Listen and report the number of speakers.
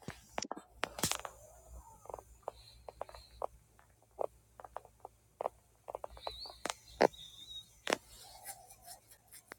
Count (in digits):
0